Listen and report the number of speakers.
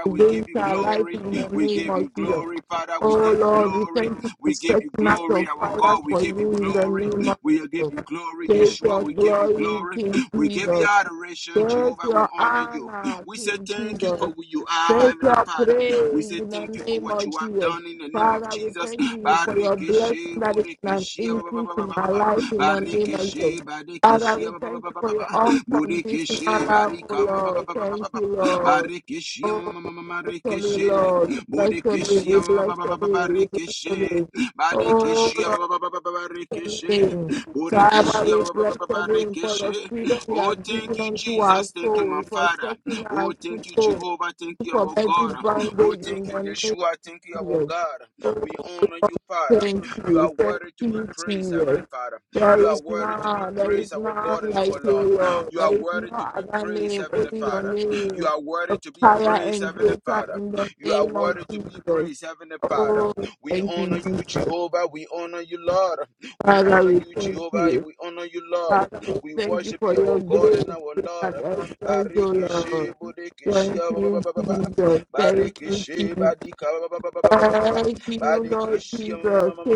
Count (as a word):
two